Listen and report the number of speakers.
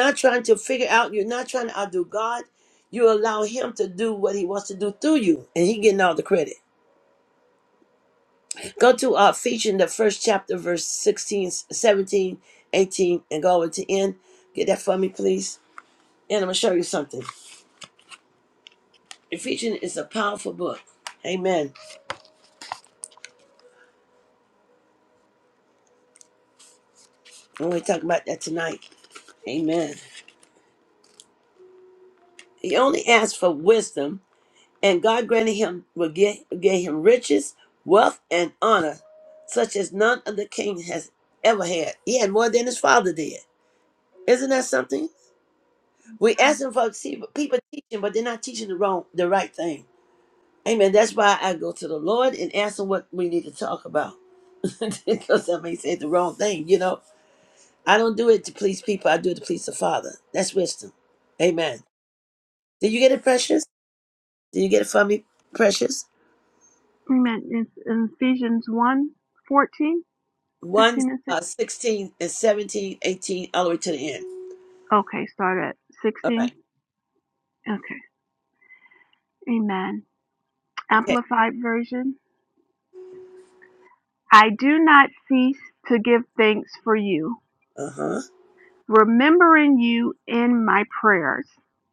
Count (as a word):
two